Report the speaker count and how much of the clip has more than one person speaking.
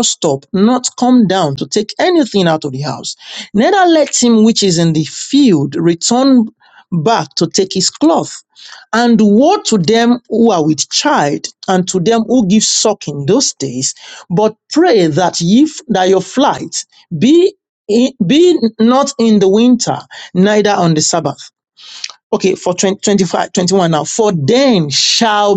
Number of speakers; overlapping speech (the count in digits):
1, no overlap